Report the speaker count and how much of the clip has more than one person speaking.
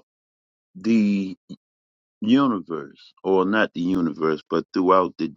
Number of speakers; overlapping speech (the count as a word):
one, no overlap